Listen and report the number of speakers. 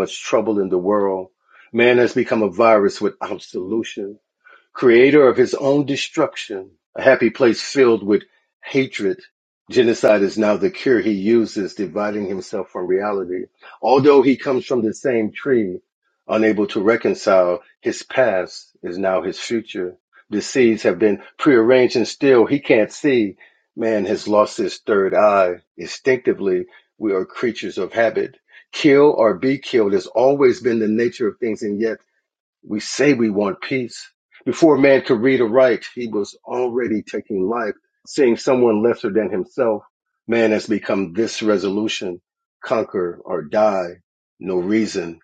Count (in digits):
1